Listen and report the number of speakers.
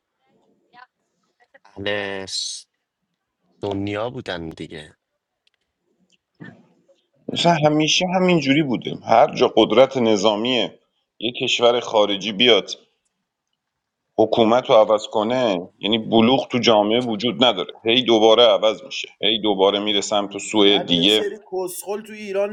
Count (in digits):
3